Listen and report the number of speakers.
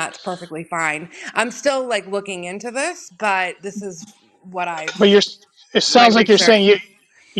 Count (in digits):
2